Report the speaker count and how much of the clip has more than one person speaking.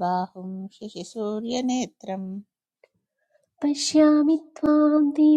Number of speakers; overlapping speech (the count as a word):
two, no overlap